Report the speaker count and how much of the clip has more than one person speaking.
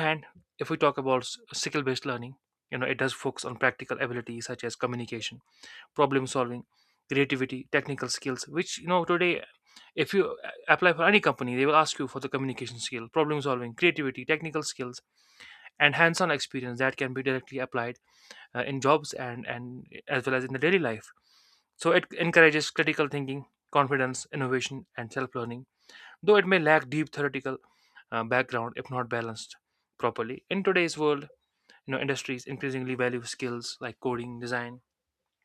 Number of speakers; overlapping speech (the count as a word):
one, no overlap